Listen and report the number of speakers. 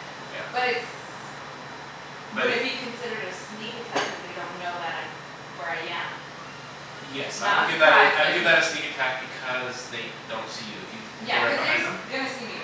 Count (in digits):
2